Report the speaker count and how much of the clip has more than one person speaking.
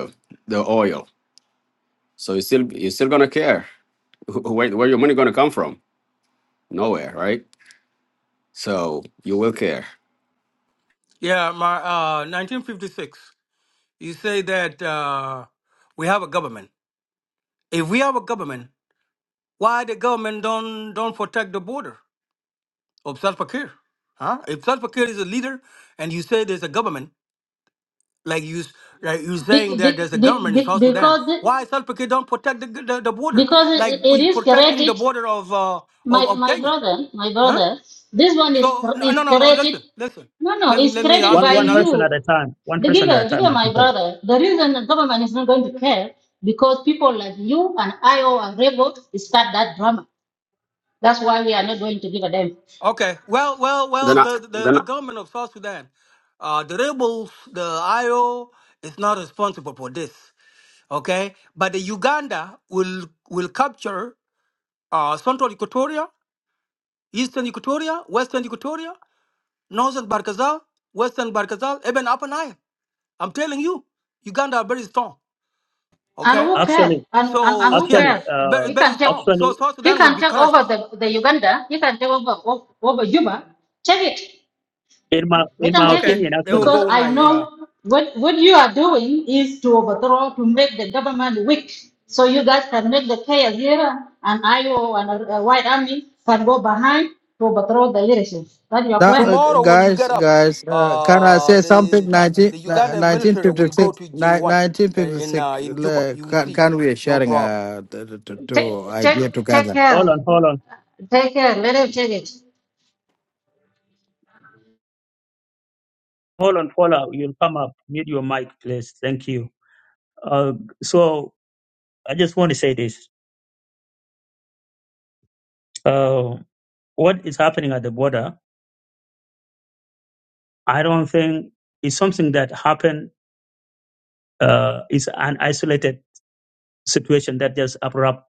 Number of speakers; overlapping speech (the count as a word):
five, about 16%